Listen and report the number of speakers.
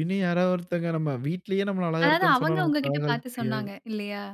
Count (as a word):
two